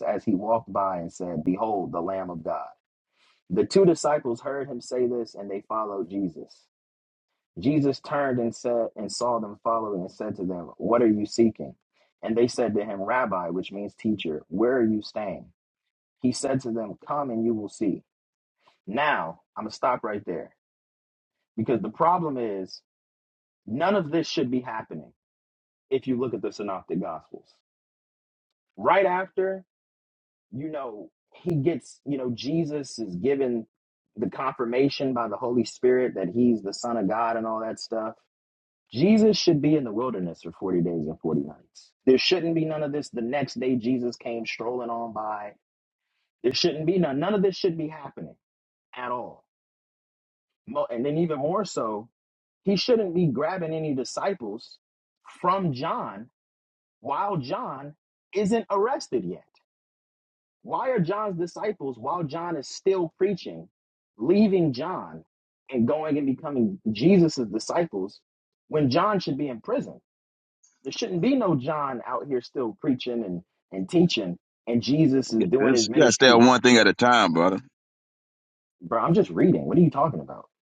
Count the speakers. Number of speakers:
two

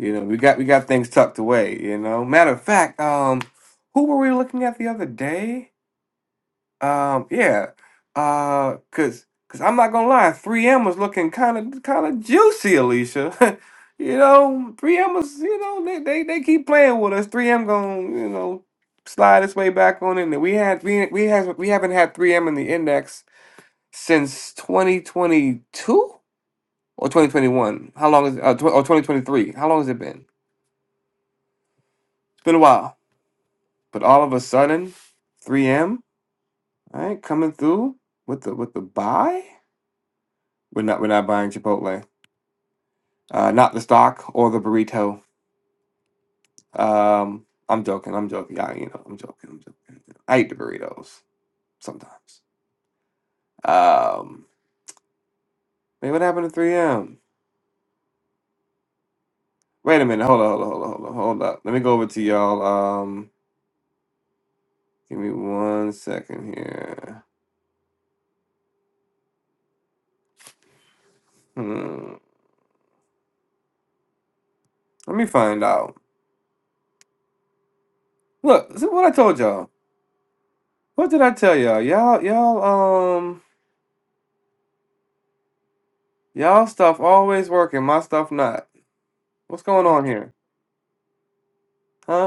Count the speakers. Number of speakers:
one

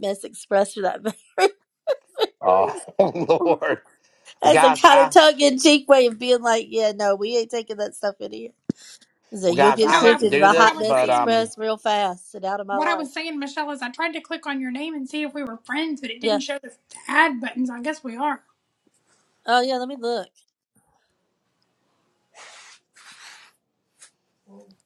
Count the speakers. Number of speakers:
three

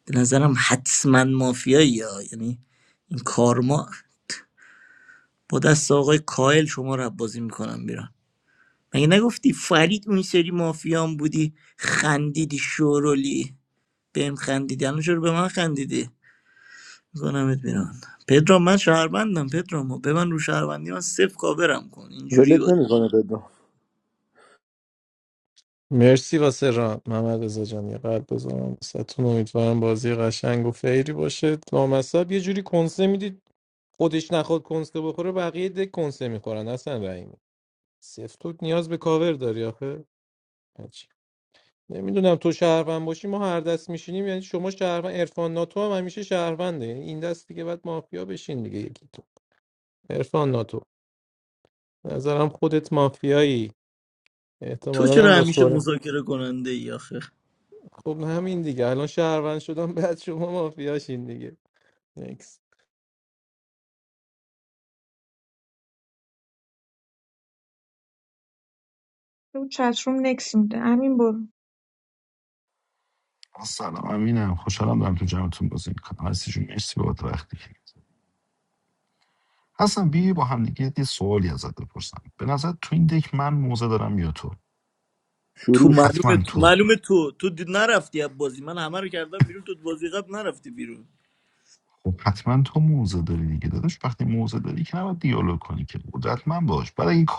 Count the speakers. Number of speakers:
five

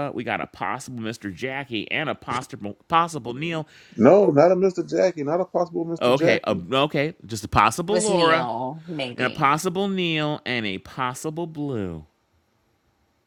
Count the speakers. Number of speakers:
three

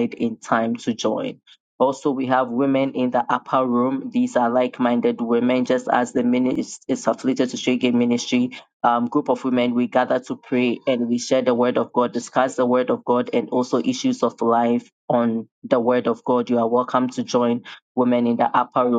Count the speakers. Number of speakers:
one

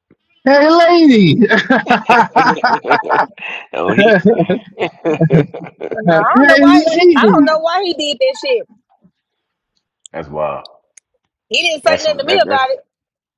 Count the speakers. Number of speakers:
three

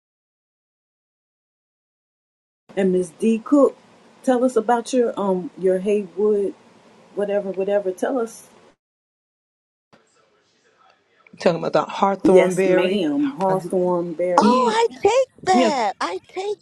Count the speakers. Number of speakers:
three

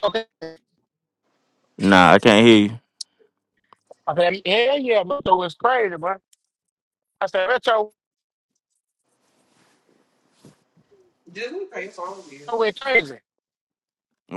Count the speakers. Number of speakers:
three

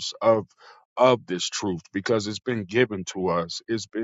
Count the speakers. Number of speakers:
one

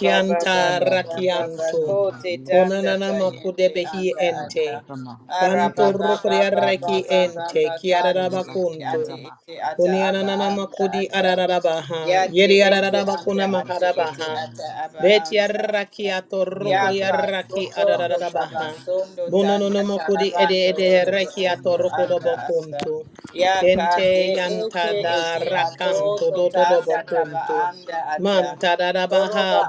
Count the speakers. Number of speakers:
three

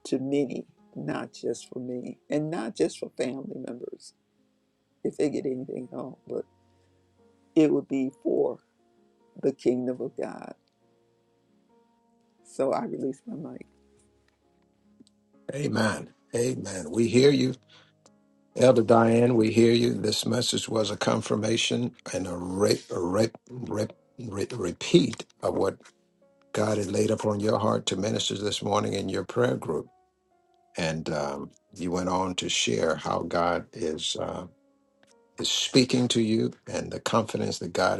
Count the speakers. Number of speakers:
two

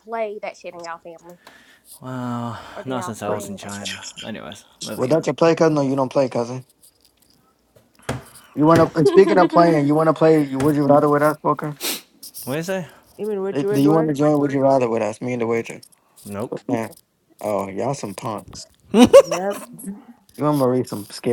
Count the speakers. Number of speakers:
four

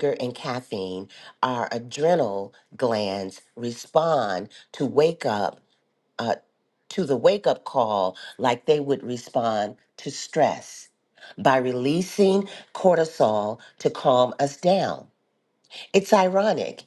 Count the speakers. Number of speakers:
one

